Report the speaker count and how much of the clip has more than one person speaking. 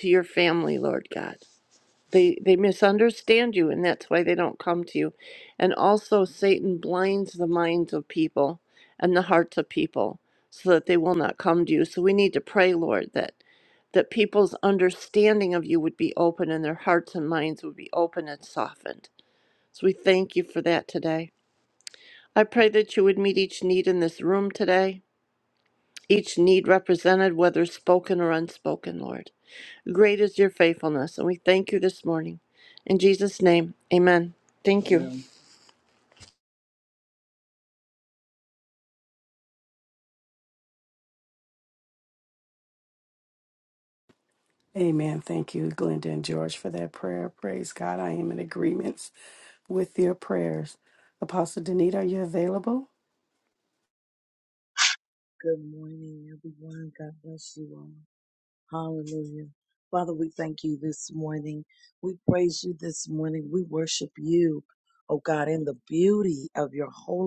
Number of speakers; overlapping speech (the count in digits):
3, no overlap